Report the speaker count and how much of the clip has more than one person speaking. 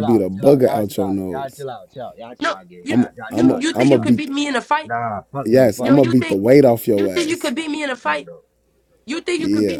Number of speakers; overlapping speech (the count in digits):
3, about 58%